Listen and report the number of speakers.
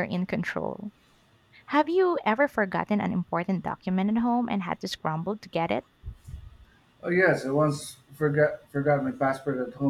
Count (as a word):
two